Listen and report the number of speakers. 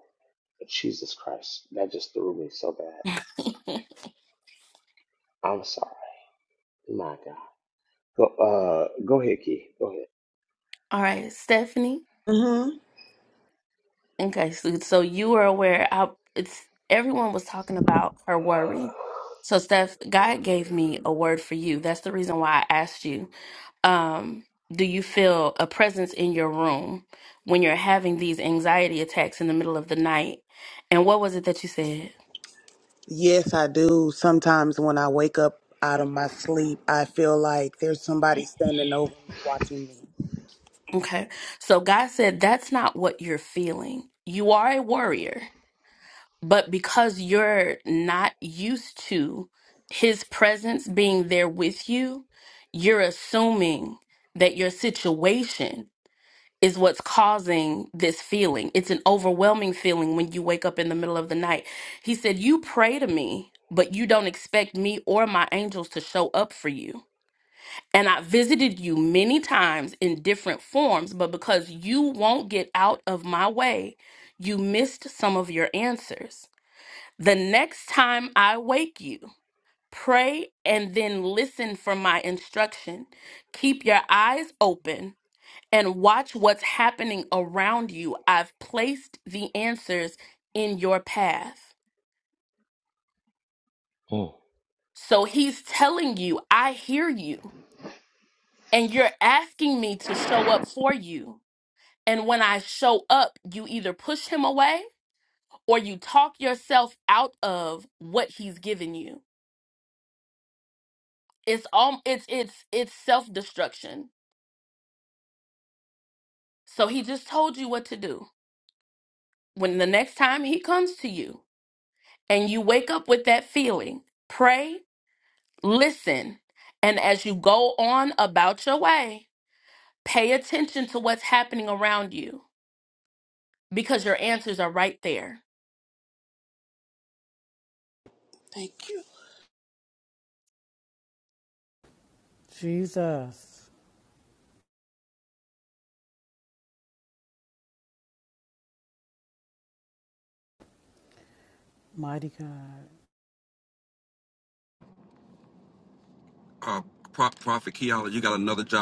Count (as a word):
five